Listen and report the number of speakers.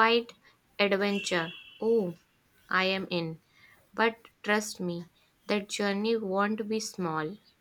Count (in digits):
1